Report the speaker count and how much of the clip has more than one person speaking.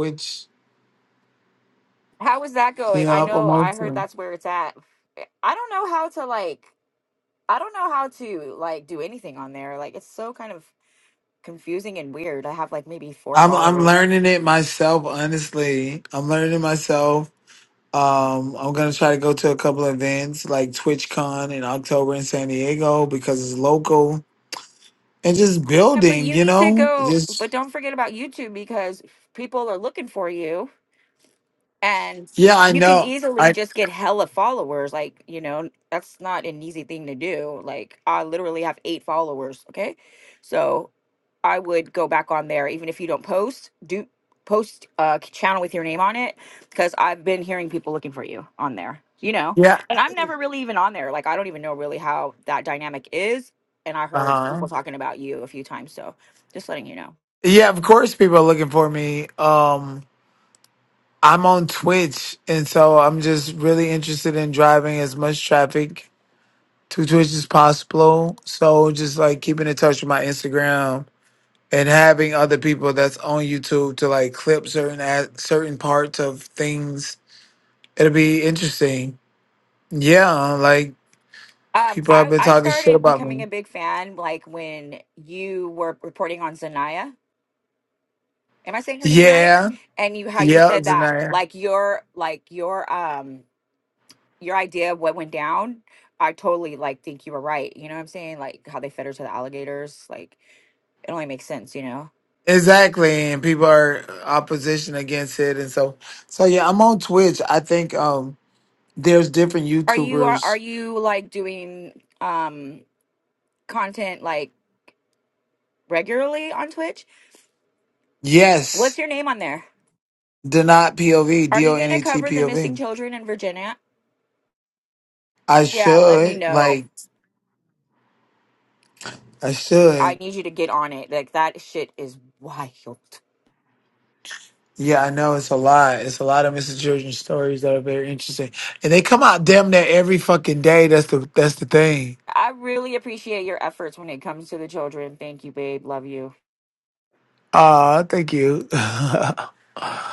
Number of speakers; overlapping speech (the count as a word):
two, about 7%